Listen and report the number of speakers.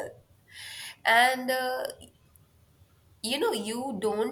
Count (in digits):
1